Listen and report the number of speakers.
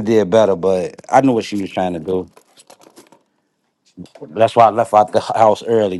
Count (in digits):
1